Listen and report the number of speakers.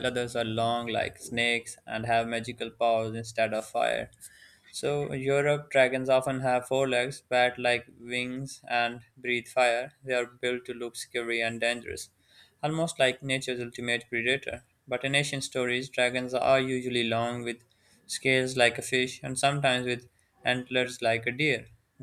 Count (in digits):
1